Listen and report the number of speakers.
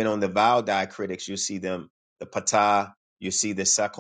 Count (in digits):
1